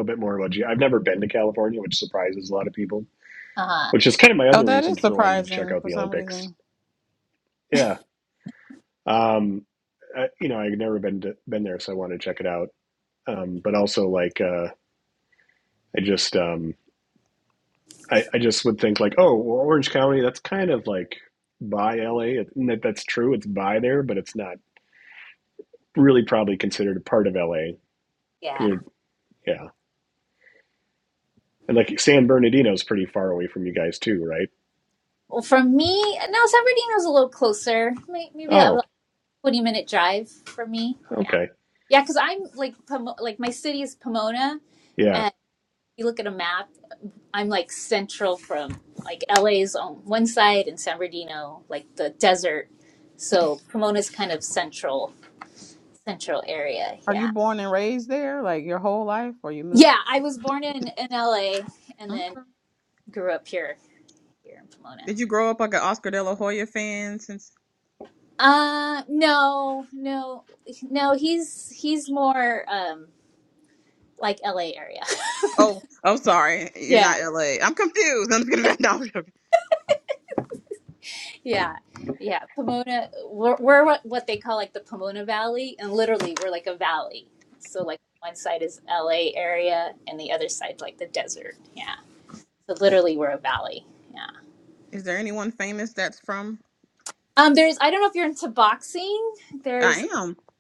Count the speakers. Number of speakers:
three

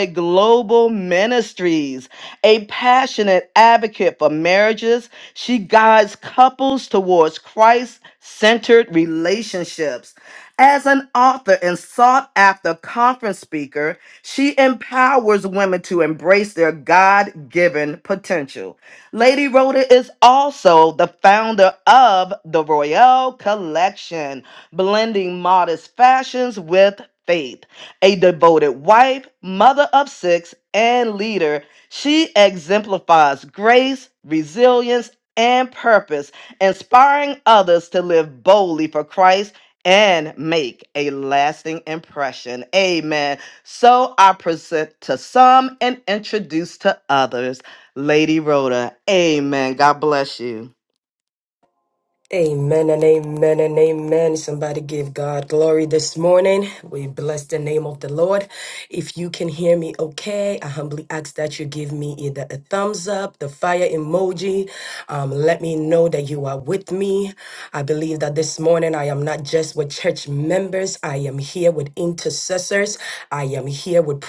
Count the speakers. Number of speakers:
two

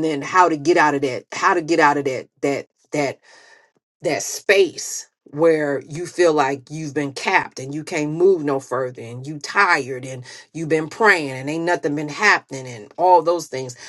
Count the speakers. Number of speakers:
one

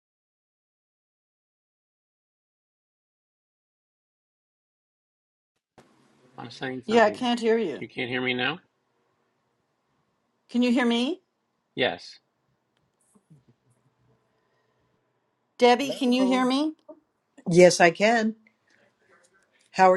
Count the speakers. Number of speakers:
three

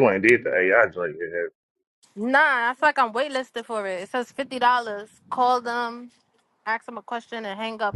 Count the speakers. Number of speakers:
two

